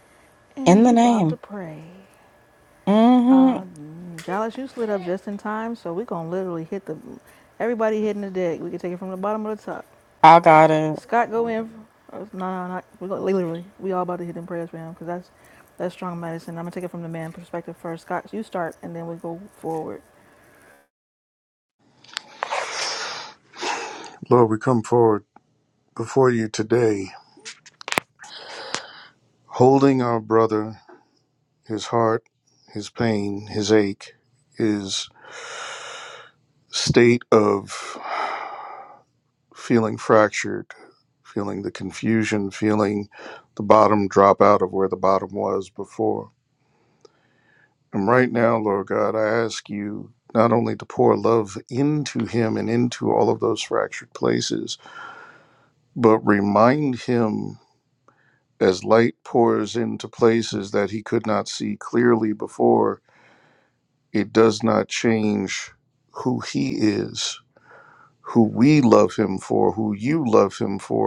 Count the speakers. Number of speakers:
three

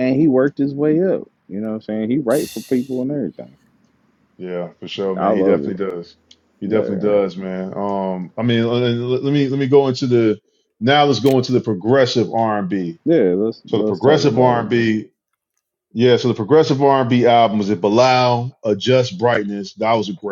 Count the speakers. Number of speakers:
two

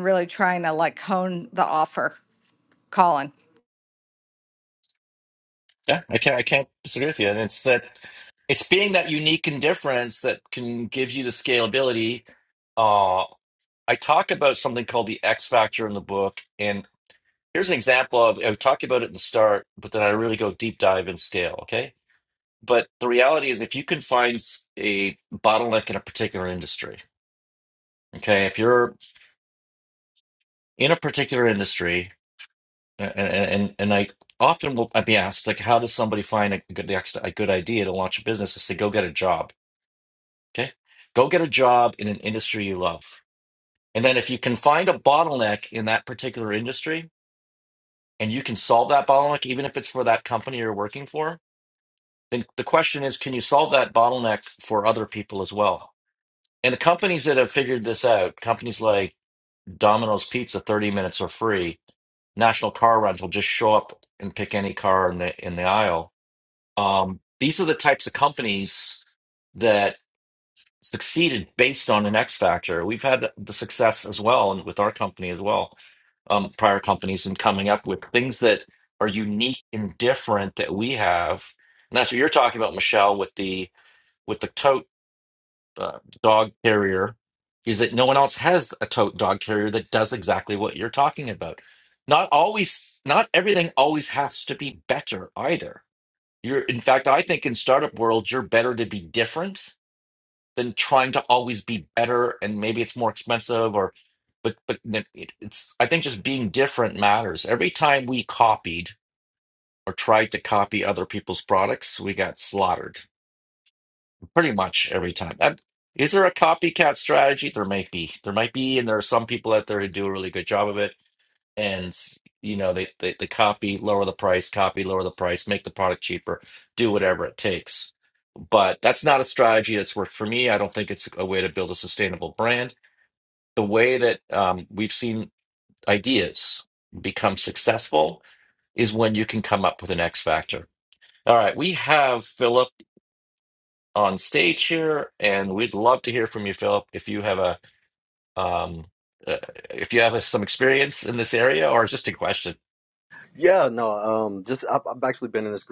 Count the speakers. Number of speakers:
three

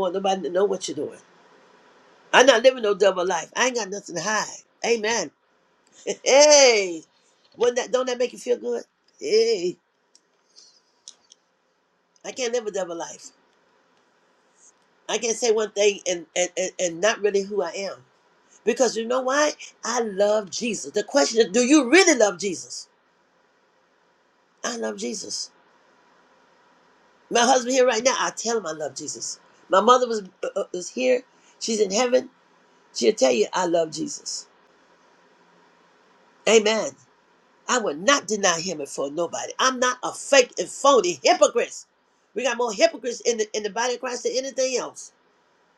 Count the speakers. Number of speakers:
one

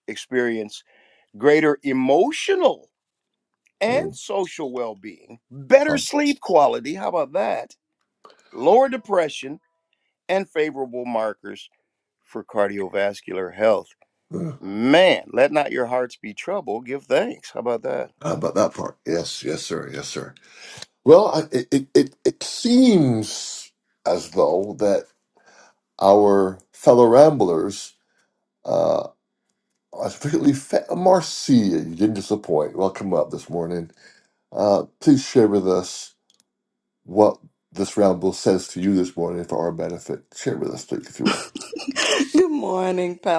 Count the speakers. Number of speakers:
three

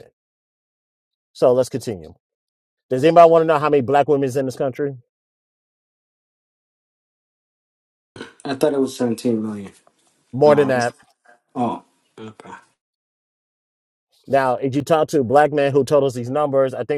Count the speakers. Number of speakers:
two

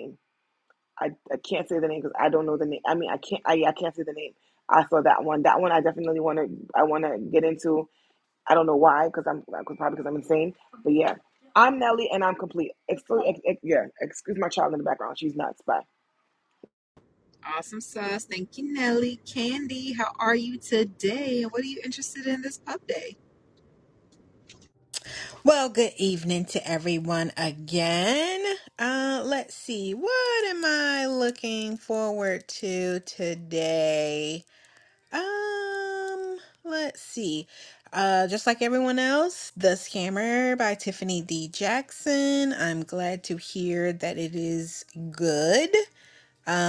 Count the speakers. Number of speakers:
three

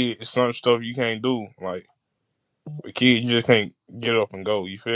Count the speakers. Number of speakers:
one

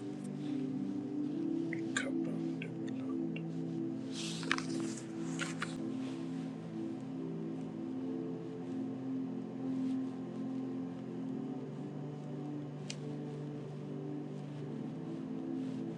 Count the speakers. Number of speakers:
zero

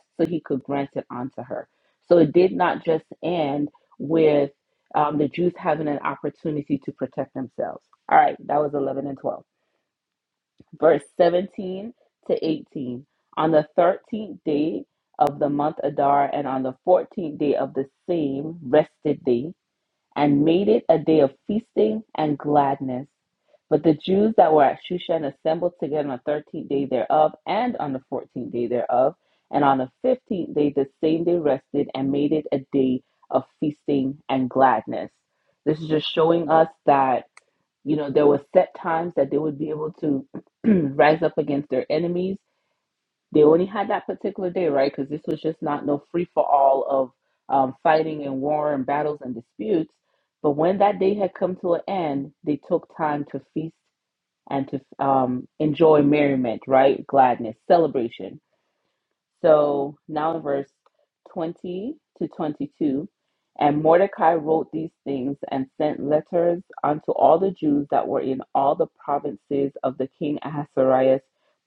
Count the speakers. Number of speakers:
one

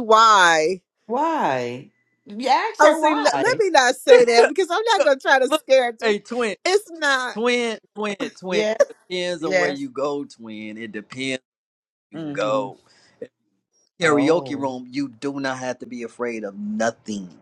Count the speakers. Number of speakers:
three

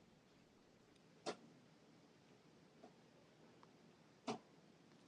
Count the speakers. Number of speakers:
zero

